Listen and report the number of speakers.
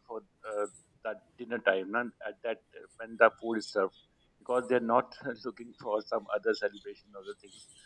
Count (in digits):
1